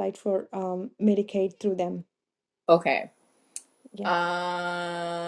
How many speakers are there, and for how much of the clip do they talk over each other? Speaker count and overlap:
two, about 2%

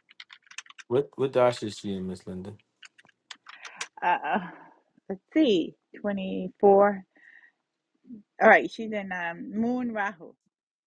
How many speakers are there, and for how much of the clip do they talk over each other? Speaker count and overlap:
two, no overlap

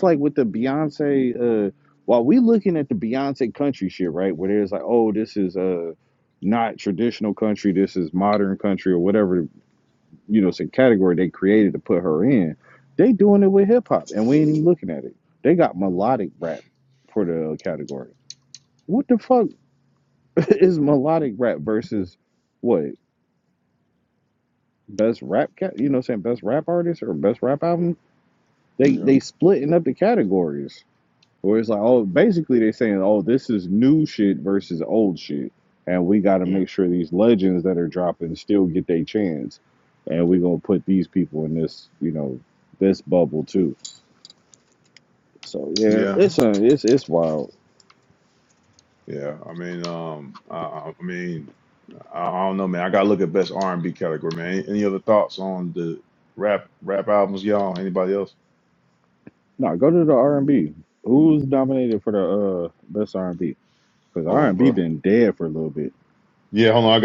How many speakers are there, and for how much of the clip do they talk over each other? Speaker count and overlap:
two, about 2%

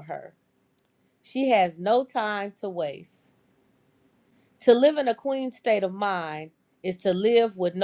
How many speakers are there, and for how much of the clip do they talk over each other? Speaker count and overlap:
one, no overlap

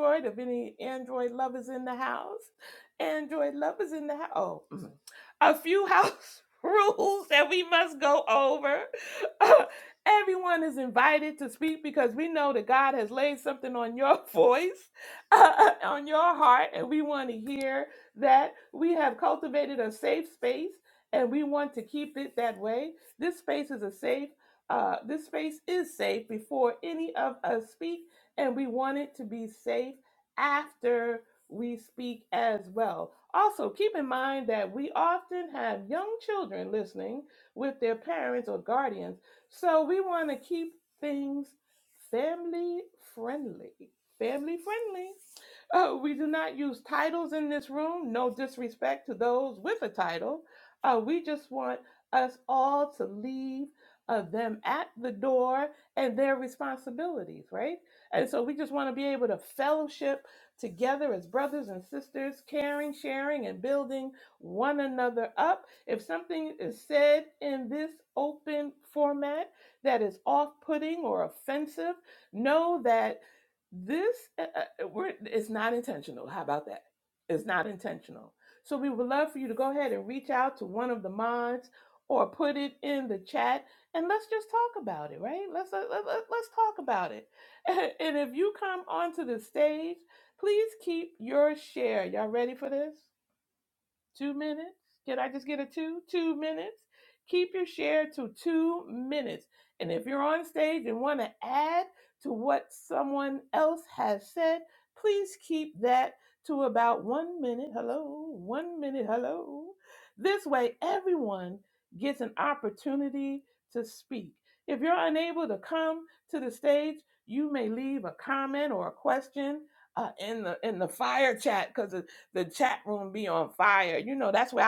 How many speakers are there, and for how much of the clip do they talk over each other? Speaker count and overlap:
one, no overlap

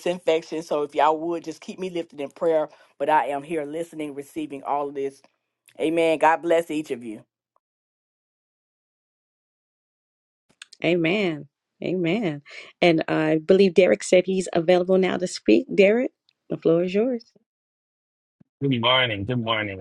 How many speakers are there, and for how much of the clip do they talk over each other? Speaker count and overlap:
three, no overlap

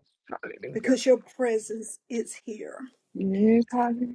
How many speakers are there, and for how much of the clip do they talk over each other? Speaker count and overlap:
two, about 6%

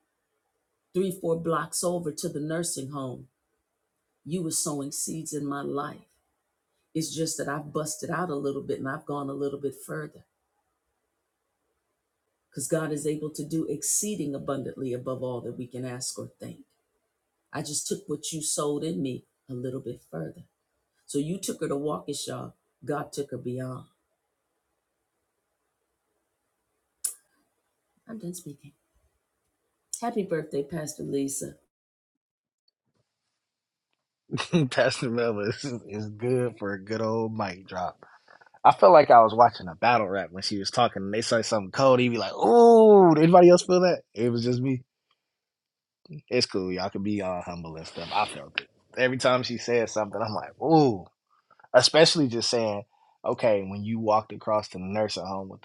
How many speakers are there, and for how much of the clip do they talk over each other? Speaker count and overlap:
two, no overlap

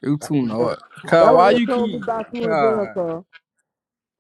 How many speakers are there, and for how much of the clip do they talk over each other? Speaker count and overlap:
two, about 35%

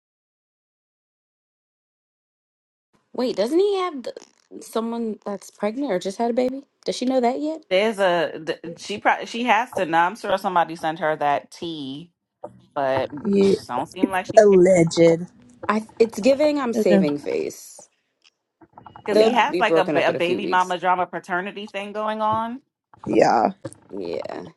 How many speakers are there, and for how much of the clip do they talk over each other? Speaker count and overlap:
three, about 10%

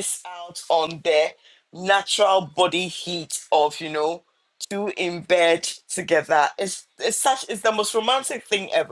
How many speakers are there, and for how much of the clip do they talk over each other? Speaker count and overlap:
one, no overlap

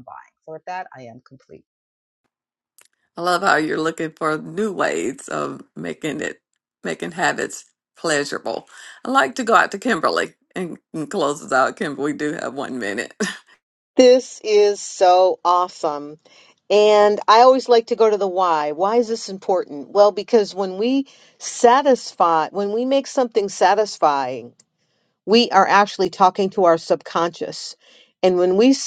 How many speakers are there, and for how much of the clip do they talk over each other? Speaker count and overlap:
three, no overlap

